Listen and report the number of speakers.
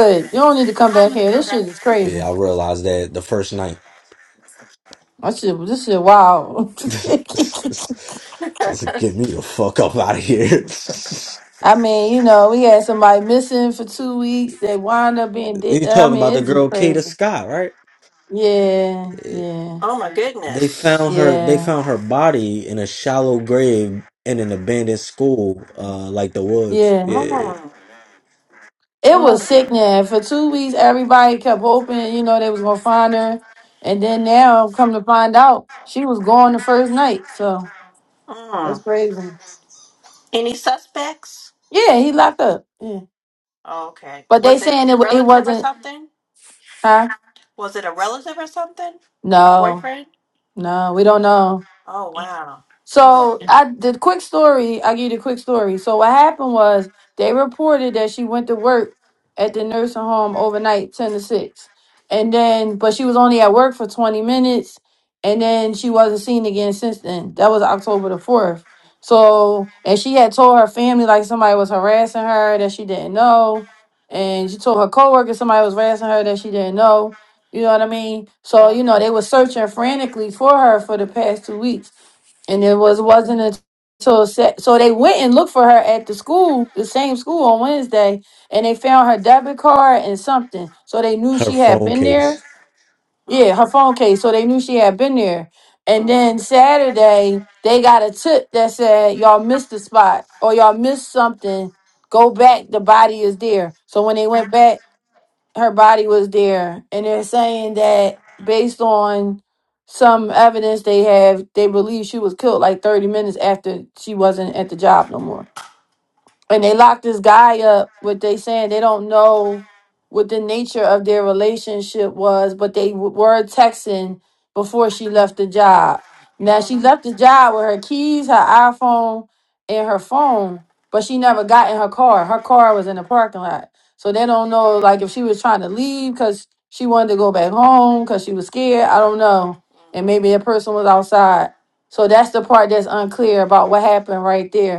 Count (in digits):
3